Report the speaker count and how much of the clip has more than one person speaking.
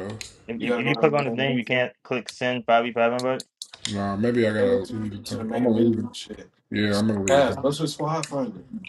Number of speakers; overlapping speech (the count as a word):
three, about 35%